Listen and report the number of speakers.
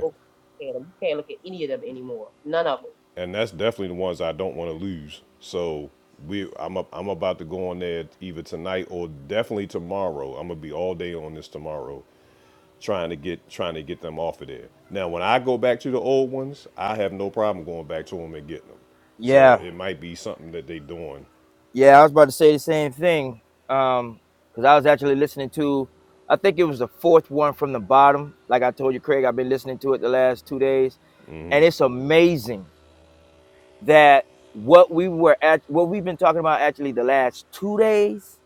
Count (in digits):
3